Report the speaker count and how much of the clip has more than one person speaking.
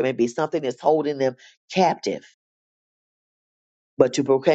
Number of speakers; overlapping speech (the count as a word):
one, no overlap